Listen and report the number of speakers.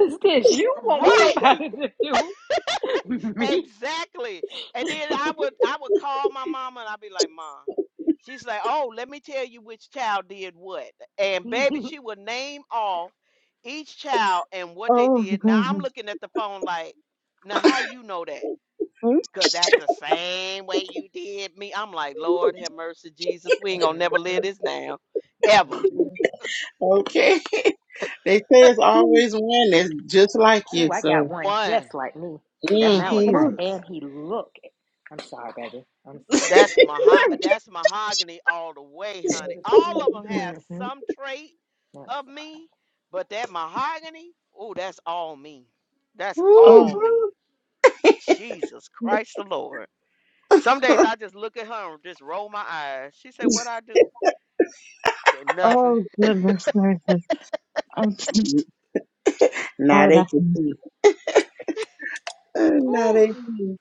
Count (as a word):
four